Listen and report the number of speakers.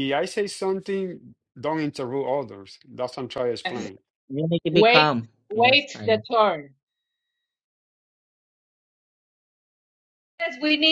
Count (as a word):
three